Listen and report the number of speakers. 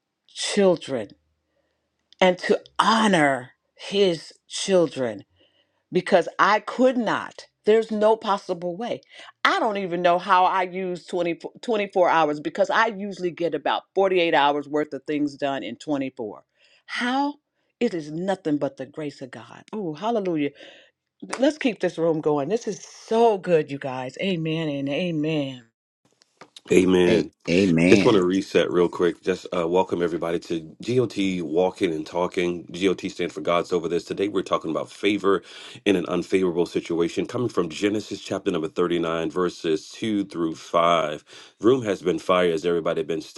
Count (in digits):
3